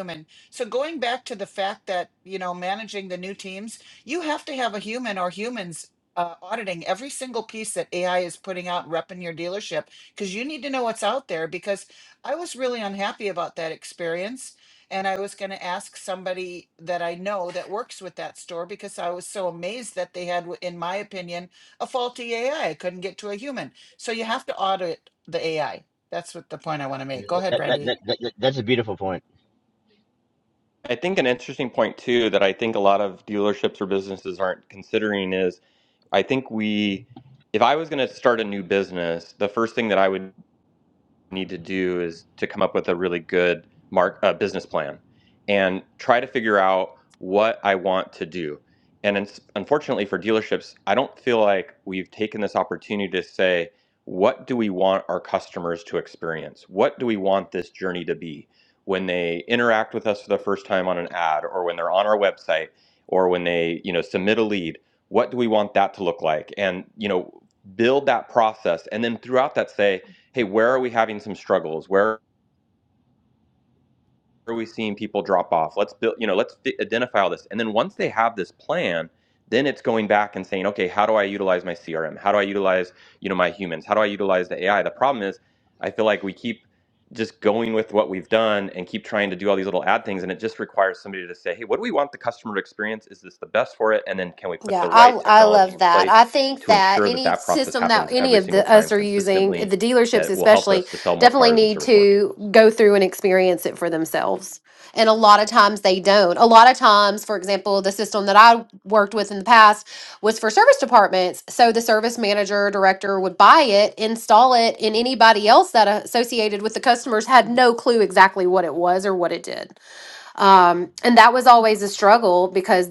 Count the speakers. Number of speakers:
4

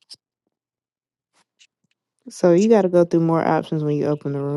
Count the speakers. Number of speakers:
1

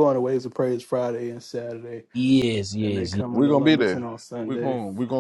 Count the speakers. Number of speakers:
3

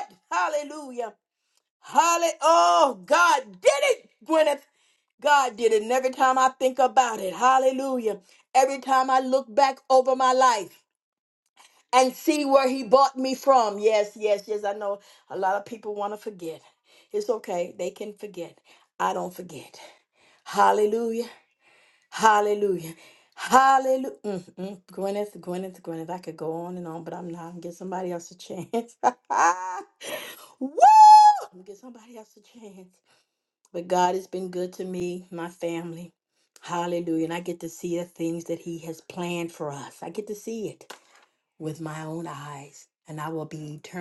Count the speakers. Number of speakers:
1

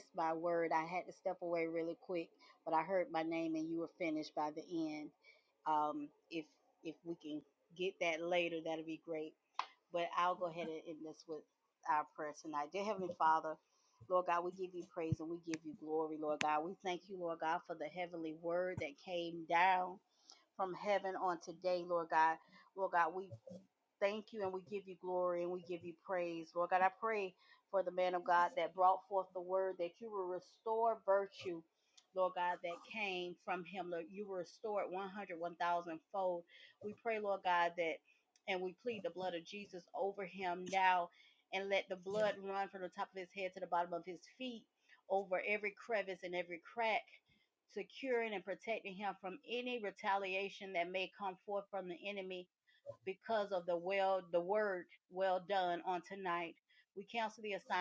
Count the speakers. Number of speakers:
1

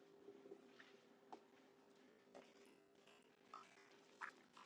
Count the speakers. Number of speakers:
0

